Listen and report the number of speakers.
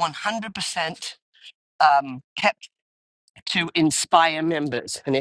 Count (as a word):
one